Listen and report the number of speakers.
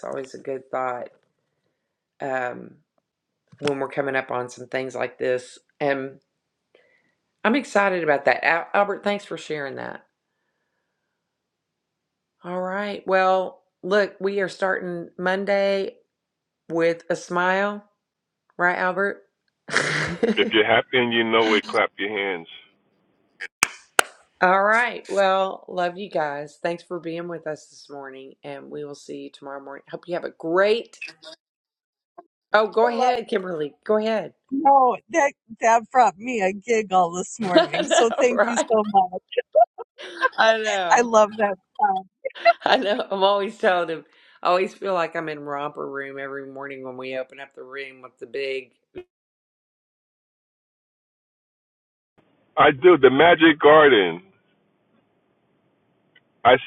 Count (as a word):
three